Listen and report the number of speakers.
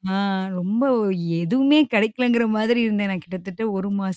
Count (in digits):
1